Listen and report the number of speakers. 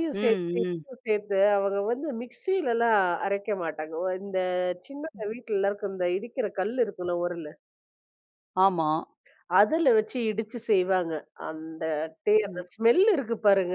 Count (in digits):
2